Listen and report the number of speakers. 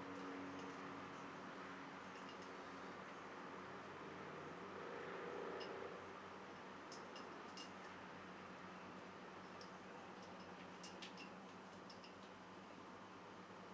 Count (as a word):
zero